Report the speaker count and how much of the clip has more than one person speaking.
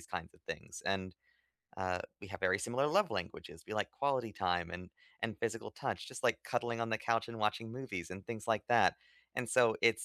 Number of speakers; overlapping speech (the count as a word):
one, no overlap